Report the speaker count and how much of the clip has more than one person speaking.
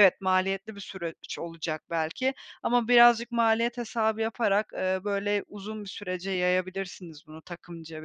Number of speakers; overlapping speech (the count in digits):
1, no overlap